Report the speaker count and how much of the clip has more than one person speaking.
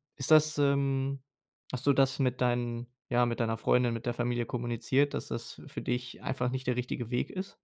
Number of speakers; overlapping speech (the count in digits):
1, no overlap